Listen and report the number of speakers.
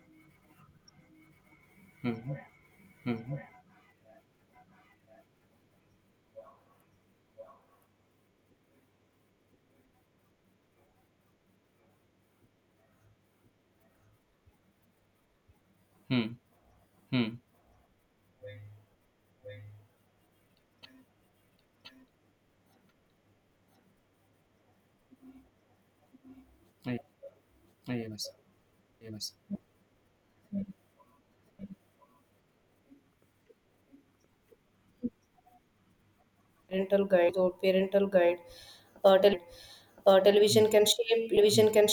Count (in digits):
2